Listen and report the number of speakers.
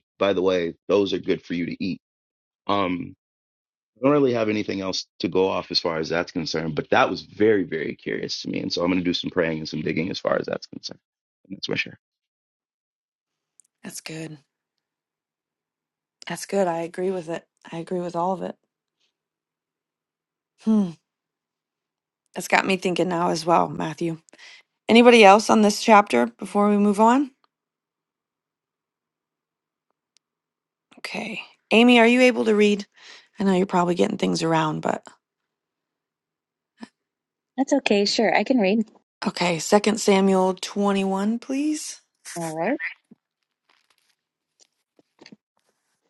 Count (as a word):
three